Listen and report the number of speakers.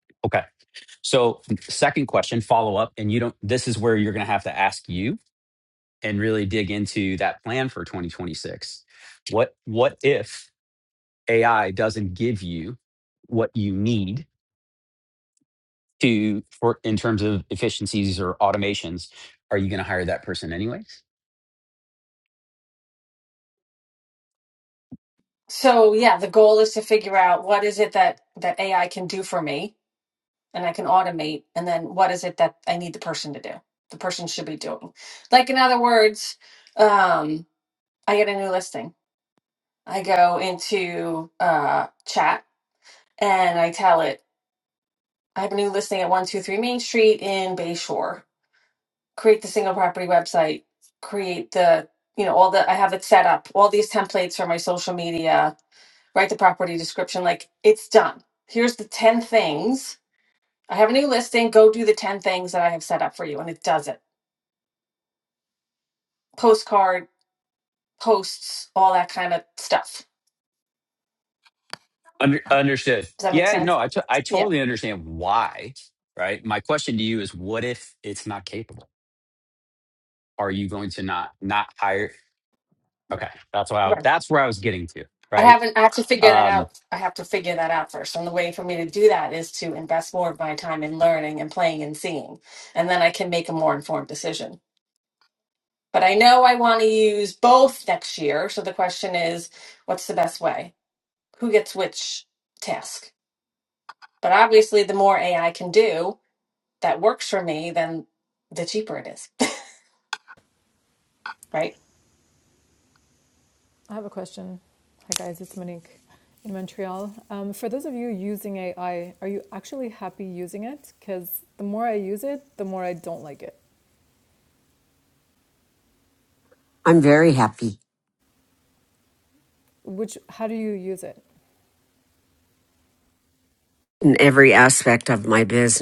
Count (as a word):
four